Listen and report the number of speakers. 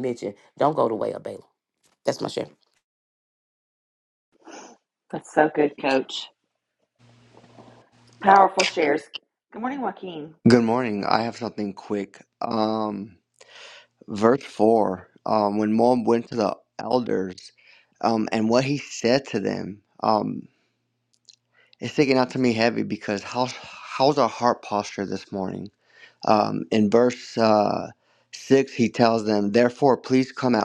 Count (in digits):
3